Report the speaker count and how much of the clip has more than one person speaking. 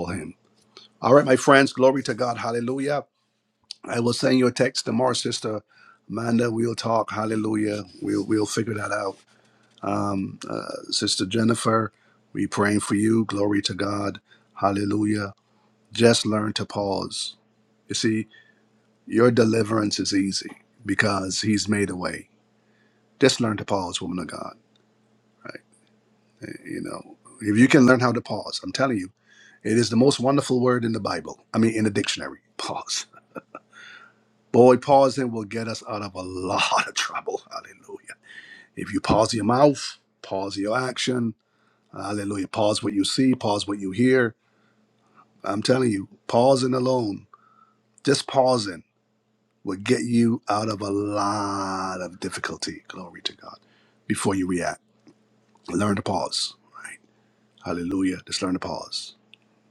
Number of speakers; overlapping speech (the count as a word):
one, no overlap